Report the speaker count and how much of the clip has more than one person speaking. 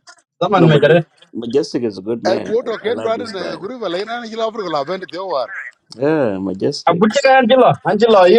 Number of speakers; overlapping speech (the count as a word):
three, about 24%